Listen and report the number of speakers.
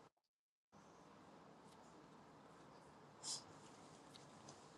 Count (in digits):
0